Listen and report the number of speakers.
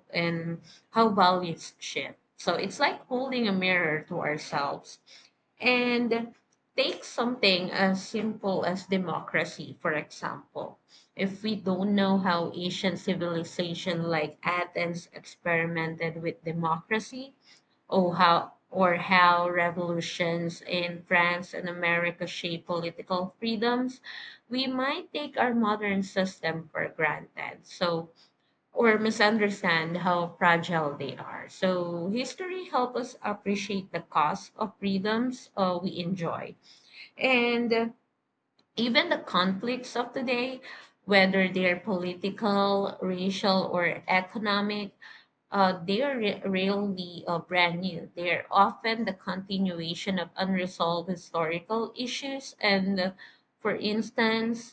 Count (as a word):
one